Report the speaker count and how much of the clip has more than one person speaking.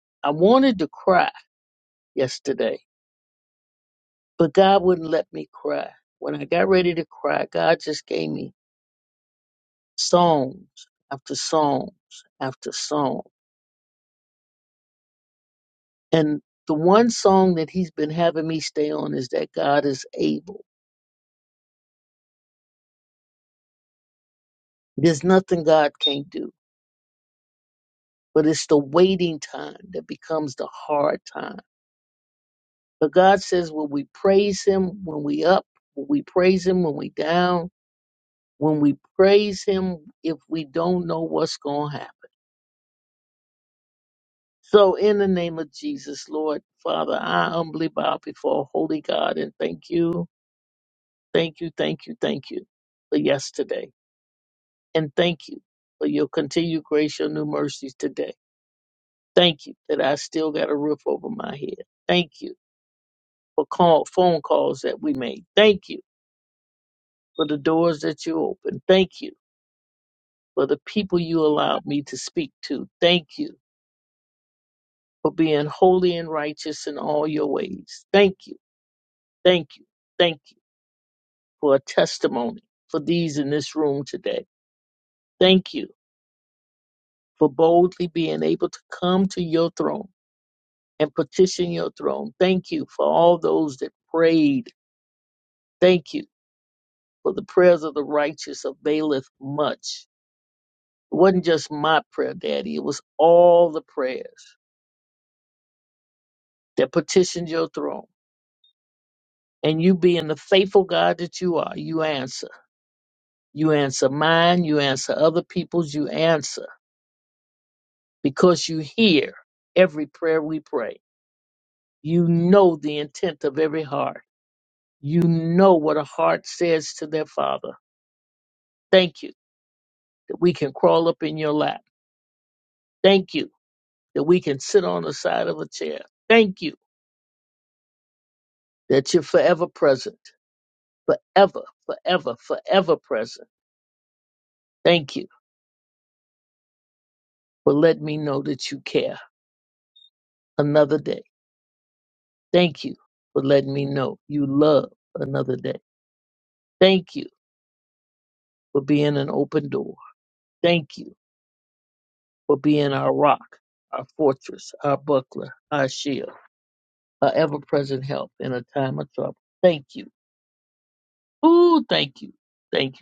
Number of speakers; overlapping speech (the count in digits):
1, no overlap